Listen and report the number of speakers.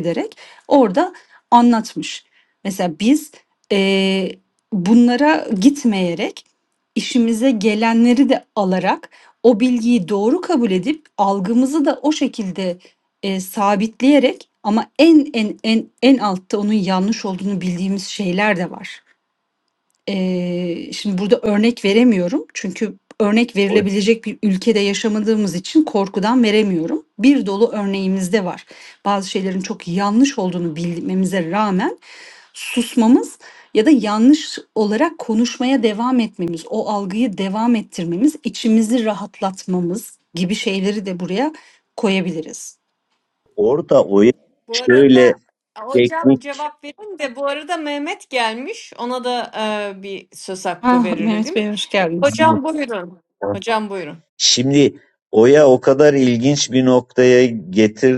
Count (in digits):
3